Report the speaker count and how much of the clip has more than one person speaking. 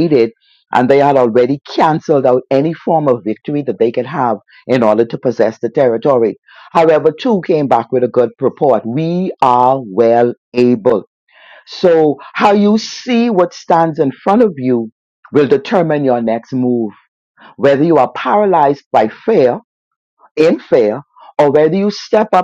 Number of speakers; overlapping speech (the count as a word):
one, no overlap